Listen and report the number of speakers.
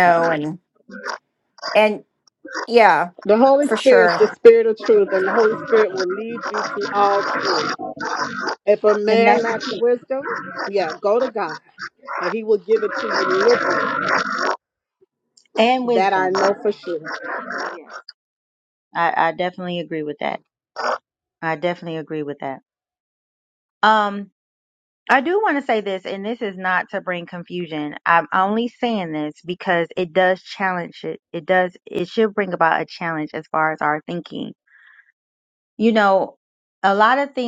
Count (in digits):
3